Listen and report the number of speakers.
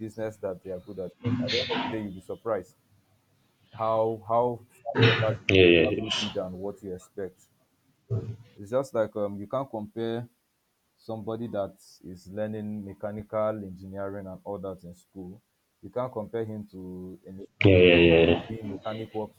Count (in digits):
2